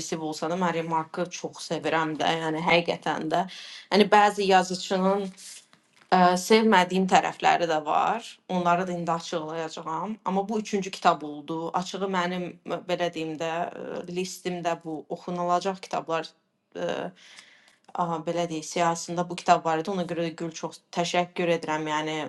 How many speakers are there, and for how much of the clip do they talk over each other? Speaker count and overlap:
one, no overlap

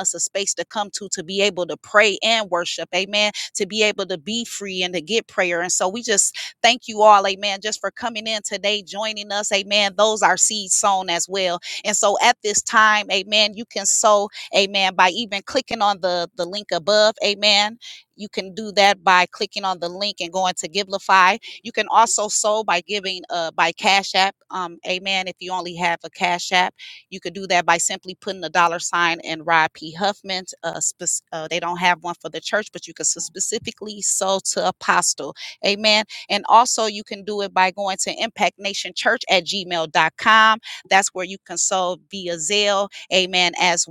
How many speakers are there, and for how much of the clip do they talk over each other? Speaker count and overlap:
one, no overlap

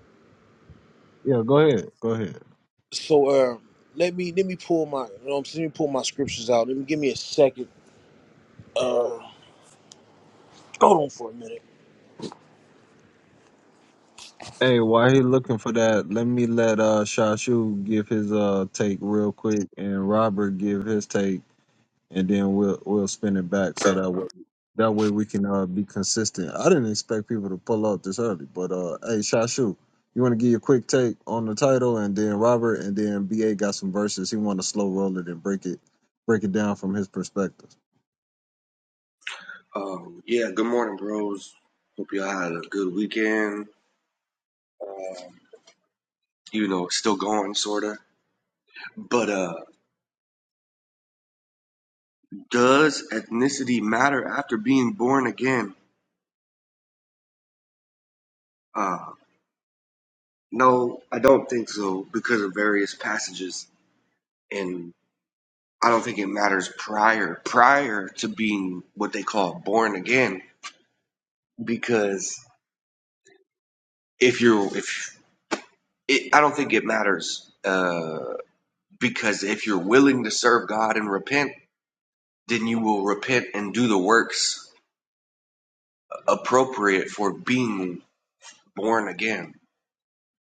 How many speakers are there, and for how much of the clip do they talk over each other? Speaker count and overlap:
three, no overlap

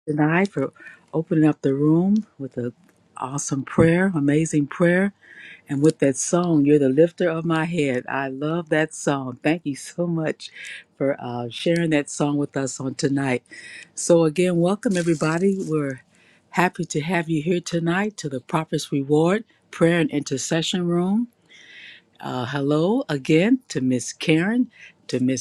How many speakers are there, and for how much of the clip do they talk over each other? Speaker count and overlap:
one, no overlap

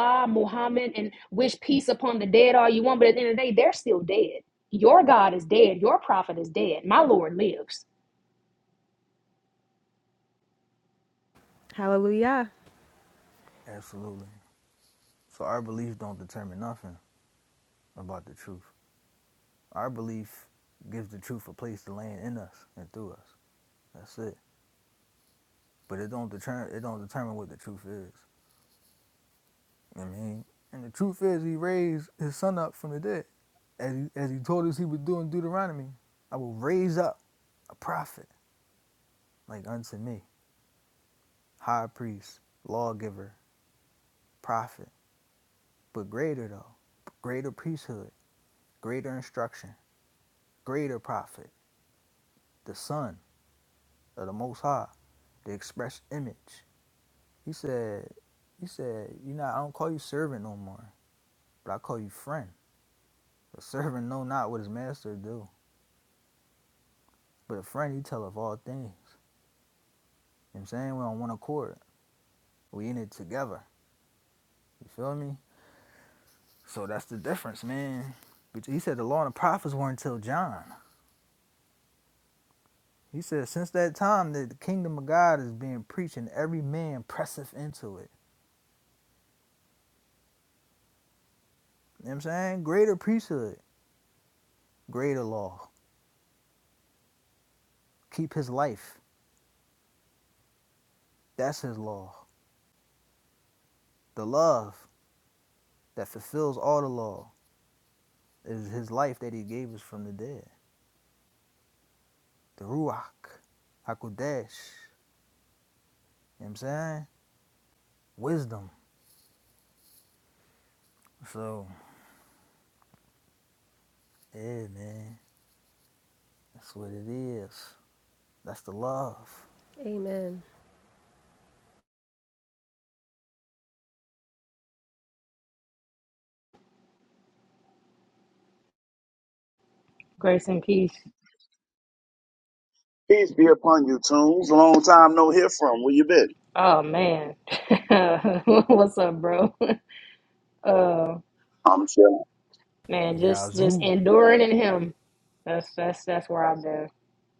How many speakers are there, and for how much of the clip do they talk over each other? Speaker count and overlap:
four, under 1%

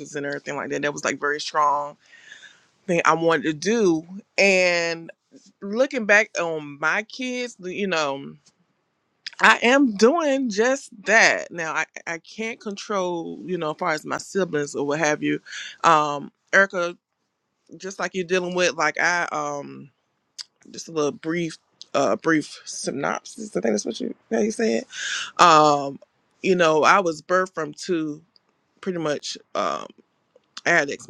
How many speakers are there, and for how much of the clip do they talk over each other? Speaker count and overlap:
one, no overlap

